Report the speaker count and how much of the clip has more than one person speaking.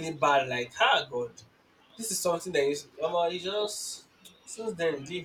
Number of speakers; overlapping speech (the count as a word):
one, no overlap